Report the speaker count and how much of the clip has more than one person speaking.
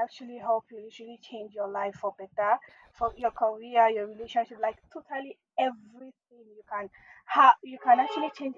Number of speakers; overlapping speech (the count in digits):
1, no overlap